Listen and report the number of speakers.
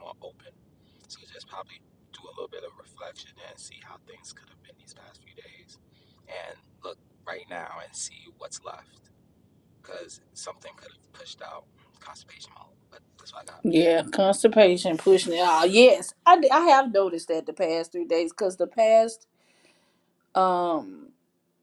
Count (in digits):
2